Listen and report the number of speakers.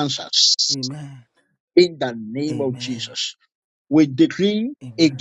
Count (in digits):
2